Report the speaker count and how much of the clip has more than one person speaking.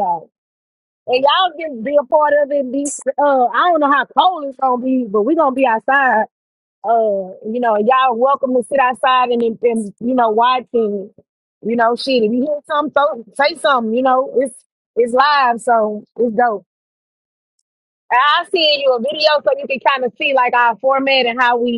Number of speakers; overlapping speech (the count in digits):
1, no overlap